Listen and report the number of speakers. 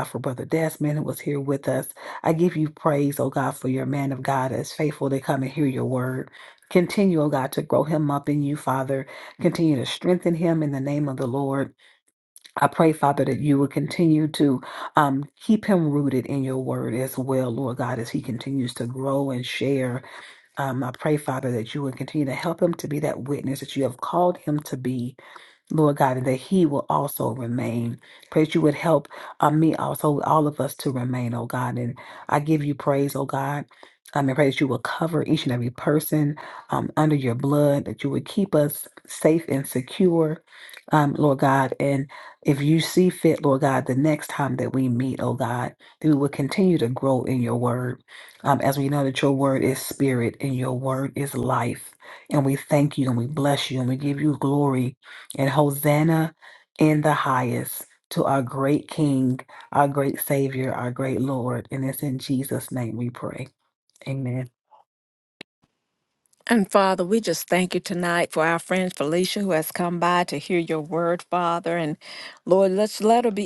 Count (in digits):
2